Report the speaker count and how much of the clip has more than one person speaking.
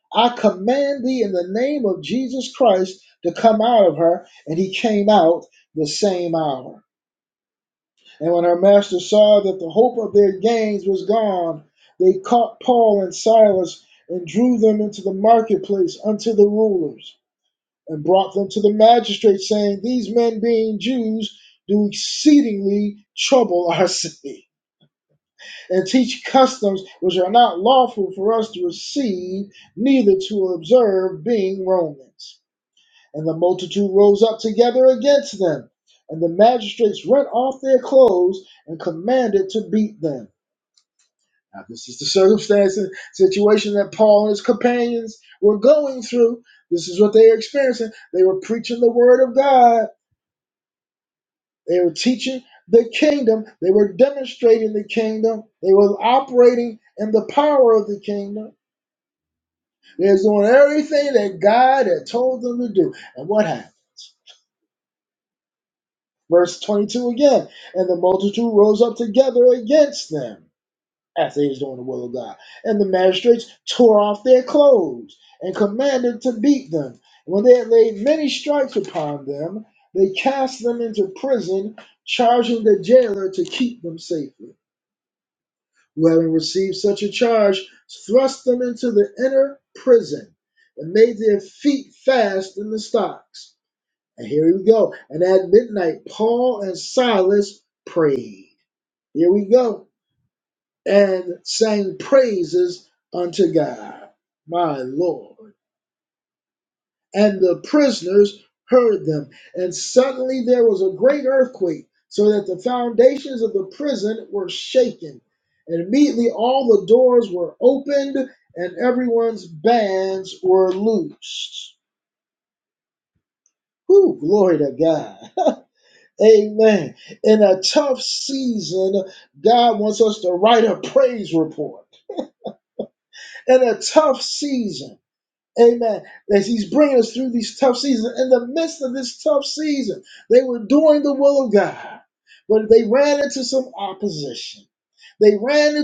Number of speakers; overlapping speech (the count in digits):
1, no overlap